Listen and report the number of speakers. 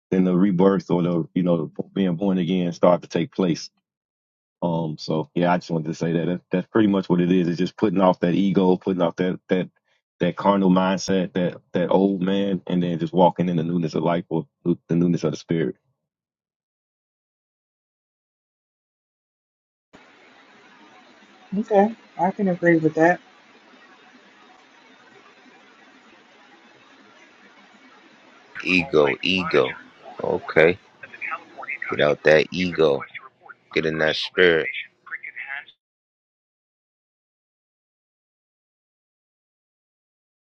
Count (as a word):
three